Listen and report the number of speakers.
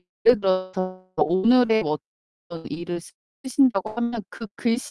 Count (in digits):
1